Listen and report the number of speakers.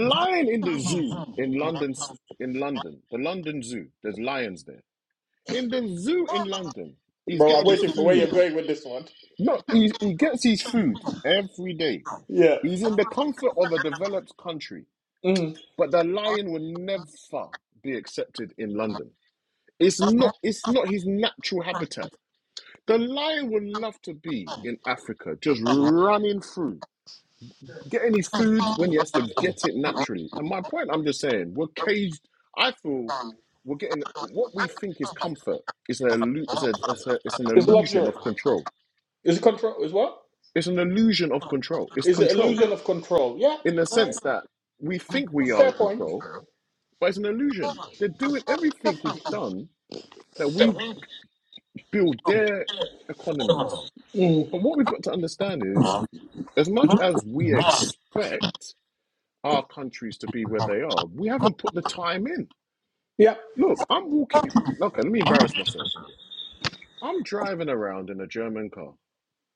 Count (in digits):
2